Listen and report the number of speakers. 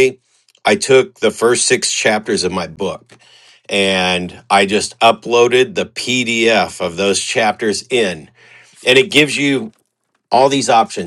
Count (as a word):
one